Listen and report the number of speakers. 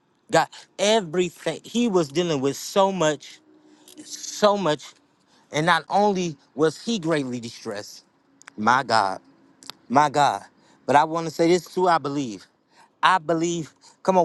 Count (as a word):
one